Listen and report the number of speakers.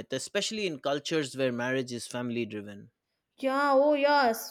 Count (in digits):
2